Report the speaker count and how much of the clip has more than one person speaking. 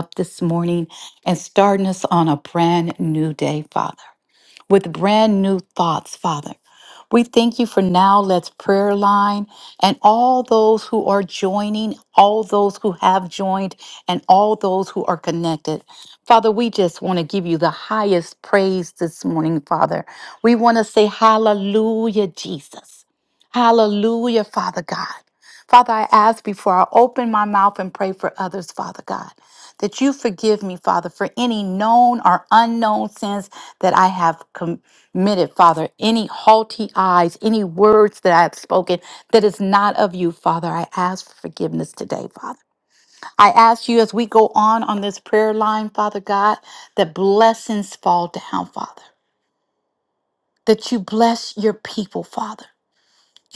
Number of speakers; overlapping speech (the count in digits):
1, no overlap